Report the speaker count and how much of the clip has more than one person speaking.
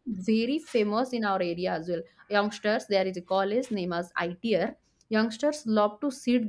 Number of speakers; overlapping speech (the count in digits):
1, no overlap